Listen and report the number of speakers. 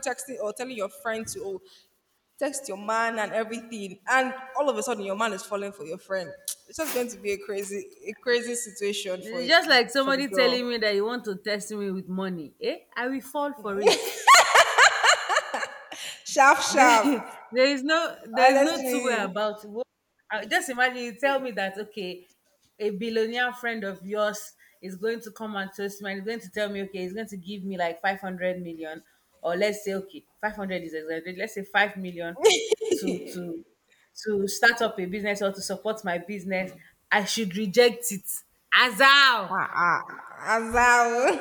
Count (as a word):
two